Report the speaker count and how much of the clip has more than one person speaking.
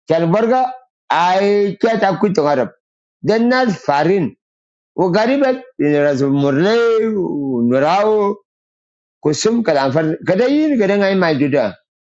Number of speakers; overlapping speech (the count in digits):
1, no overlap